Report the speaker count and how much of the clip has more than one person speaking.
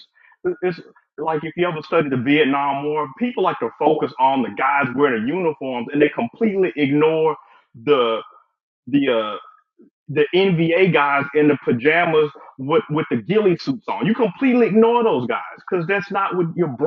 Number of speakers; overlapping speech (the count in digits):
1, no overlap